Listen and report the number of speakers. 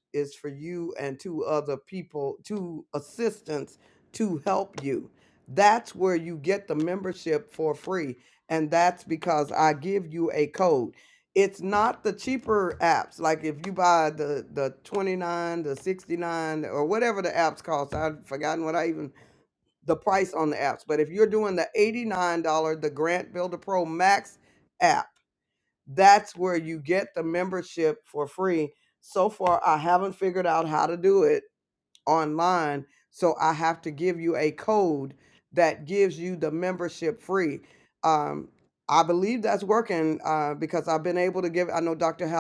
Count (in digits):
1